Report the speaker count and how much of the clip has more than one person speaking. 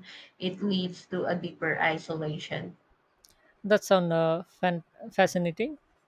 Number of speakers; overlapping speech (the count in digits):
2, no overlap